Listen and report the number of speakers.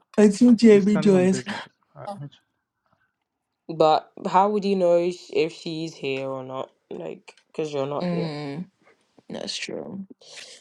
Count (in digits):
3